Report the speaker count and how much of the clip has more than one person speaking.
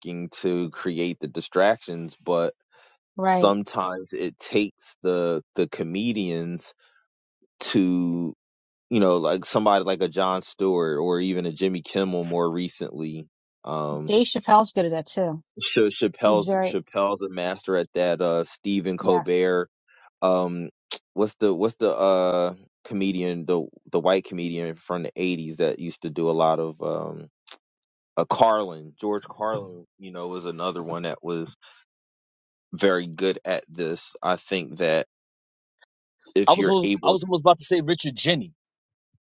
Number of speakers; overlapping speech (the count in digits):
3, about 4%